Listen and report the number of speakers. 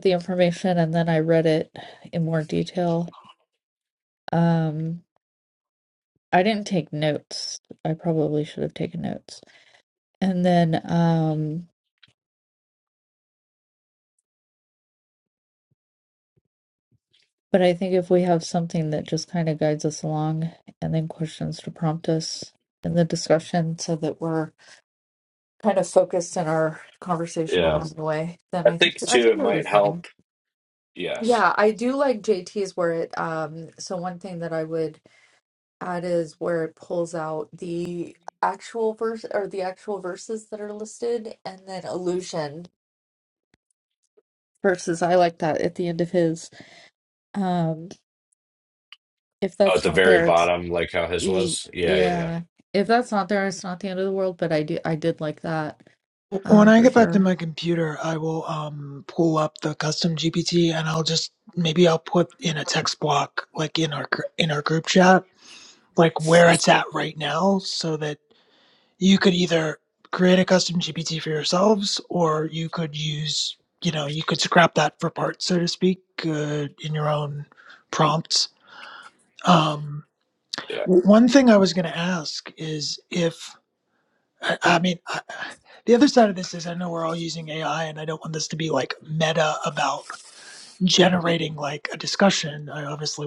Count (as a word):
three